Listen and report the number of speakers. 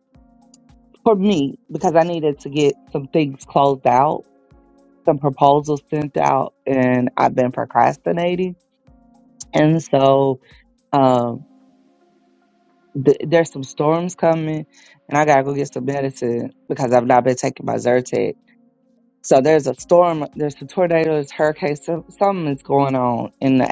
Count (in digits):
1